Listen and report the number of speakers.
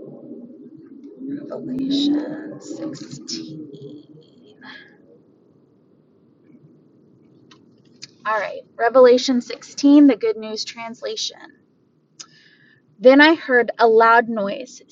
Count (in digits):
1